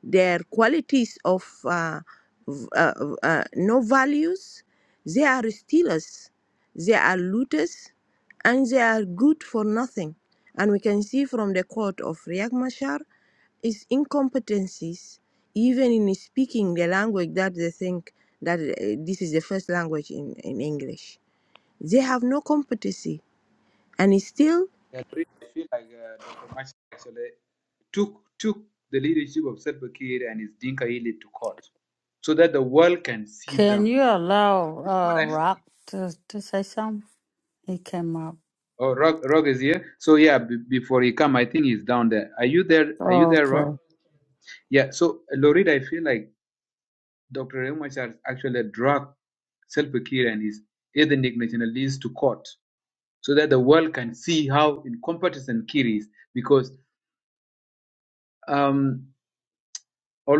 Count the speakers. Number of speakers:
3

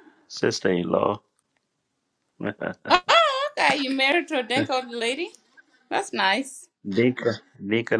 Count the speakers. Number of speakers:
2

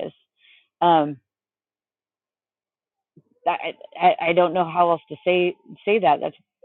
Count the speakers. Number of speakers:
1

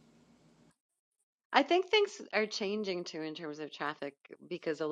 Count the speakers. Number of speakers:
1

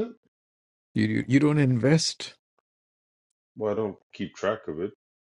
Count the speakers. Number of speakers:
2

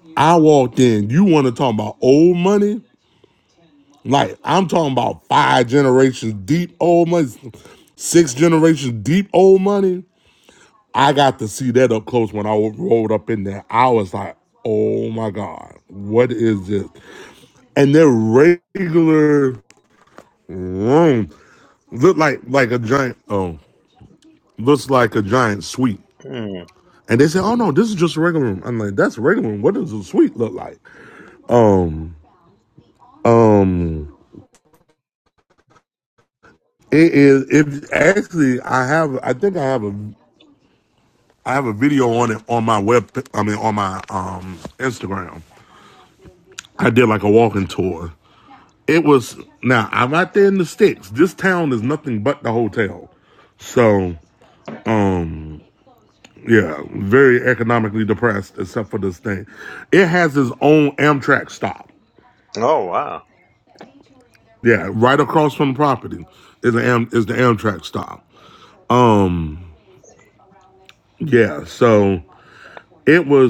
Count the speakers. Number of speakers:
2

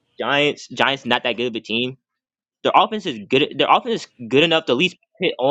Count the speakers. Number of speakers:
1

